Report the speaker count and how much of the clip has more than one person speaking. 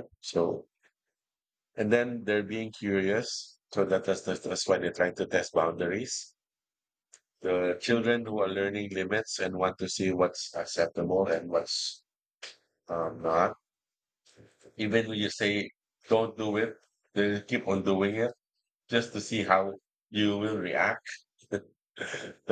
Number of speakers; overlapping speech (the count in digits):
1, no overlap